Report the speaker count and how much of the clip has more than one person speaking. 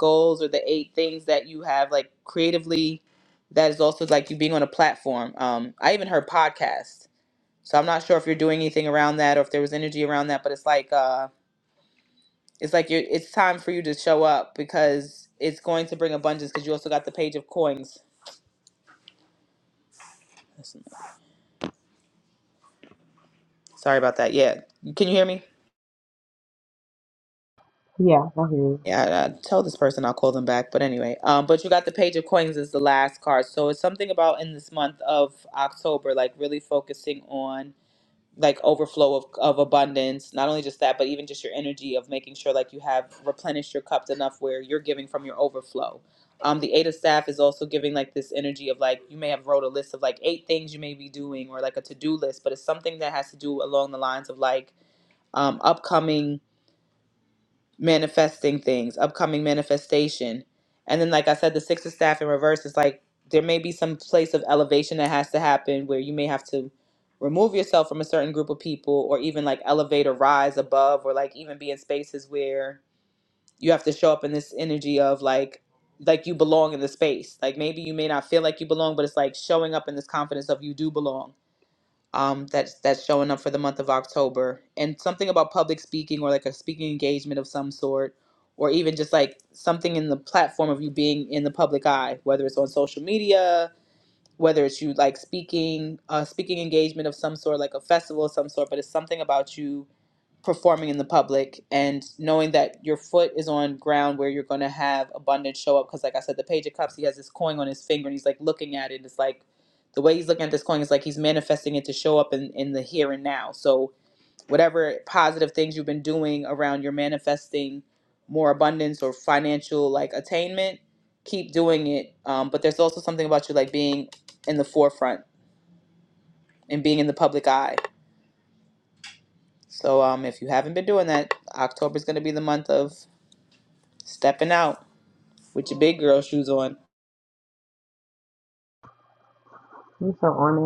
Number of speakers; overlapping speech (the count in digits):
2, no overlap